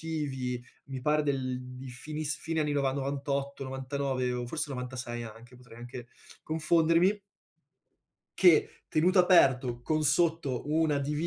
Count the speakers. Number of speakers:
one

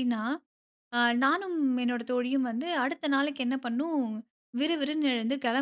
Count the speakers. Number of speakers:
one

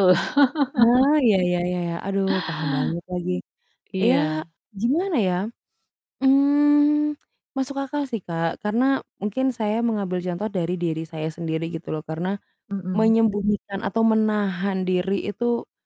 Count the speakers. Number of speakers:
two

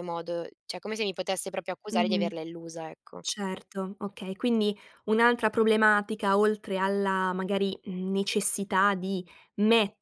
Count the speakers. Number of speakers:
two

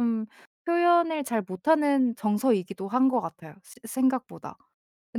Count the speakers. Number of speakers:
one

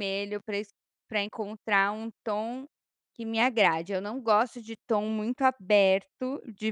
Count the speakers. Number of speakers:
one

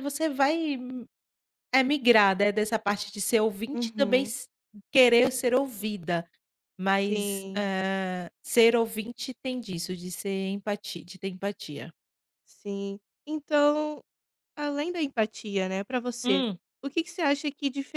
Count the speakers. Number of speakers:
two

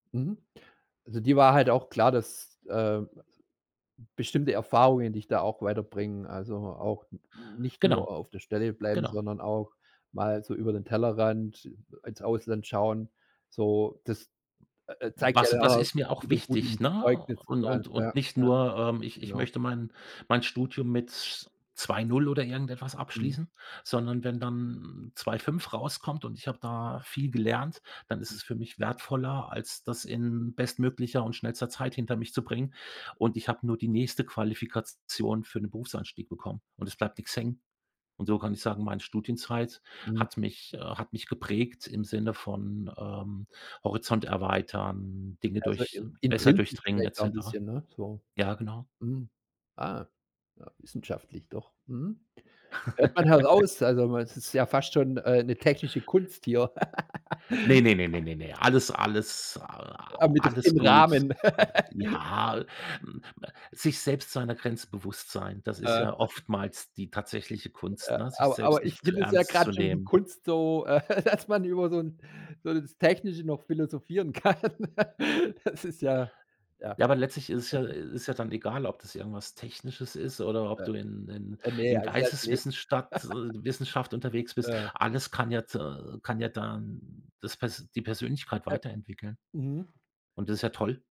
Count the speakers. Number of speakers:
two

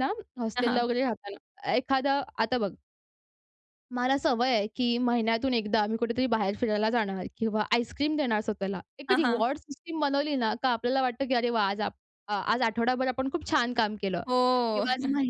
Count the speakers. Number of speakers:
two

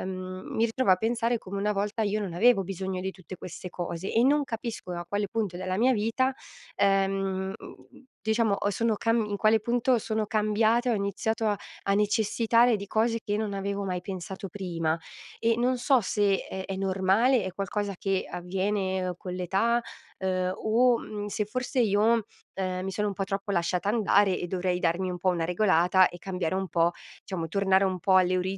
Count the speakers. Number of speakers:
one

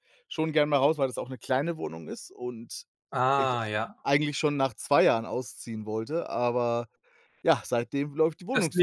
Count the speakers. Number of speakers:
two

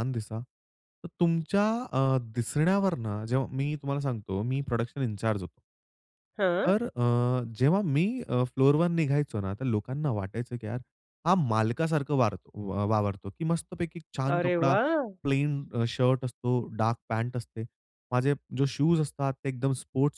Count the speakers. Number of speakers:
two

